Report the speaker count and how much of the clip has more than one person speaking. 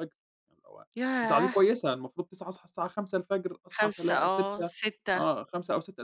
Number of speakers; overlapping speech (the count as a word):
two, about 25%